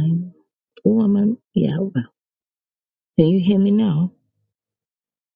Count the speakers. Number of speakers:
1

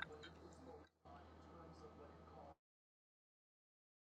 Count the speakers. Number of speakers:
0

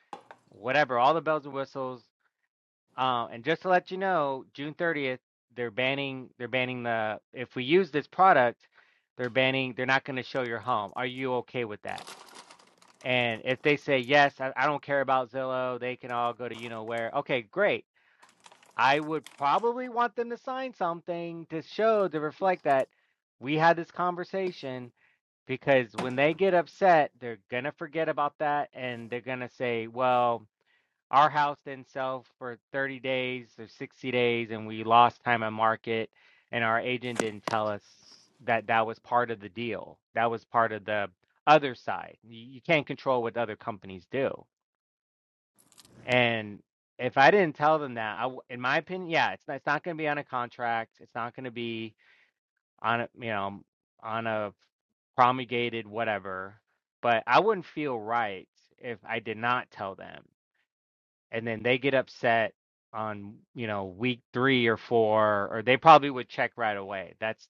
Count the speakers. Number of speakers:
1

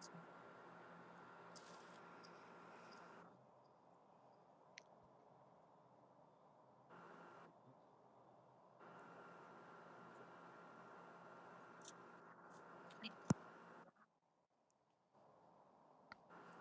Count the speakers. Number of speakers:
0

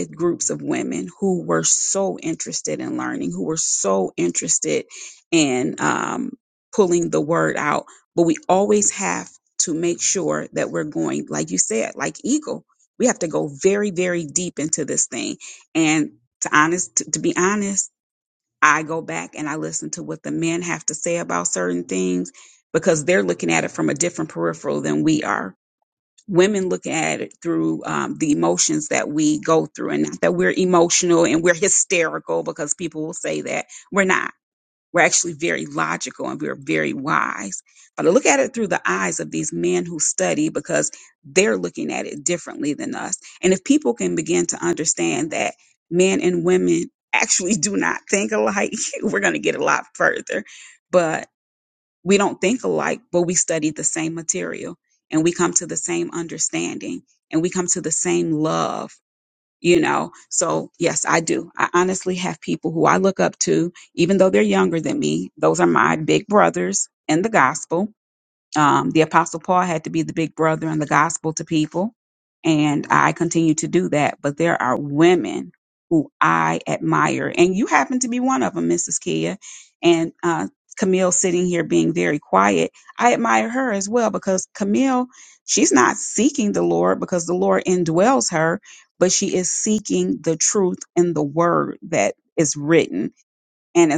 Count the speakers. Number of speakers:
1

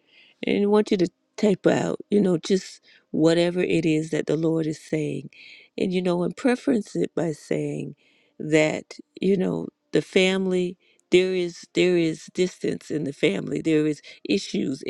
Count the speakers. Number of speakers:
1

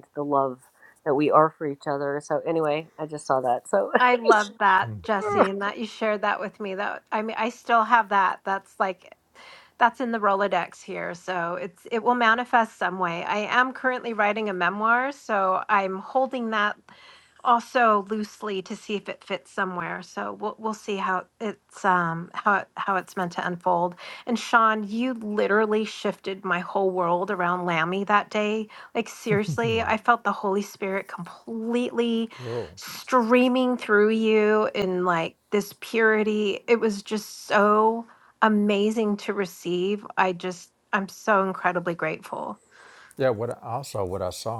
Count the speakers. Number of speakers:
3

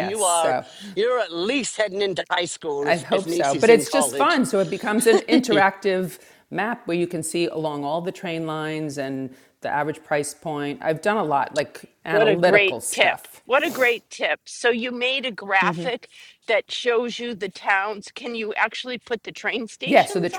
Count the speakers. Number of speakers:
3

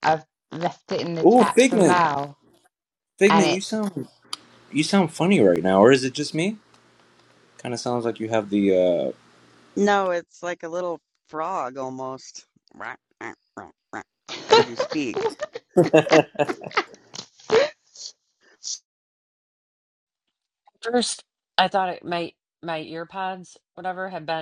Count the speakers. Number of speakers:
4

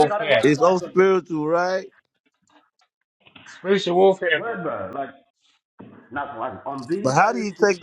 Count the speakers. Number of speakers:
3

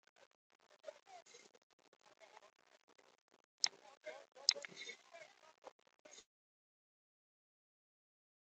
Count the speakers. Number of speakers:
0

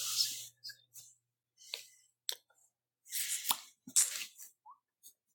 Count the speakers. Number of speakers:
0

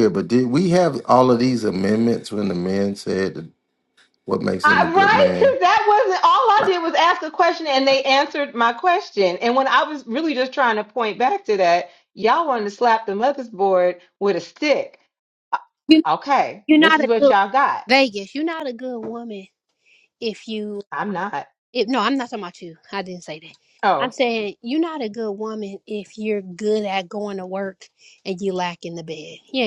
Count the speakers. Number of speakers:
3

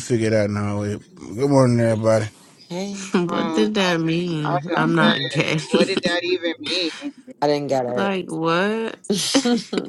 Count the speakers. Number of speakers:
4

